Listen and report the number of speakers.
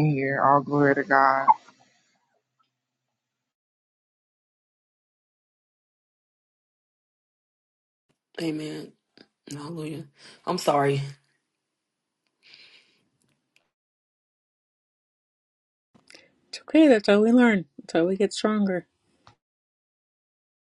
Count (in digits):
3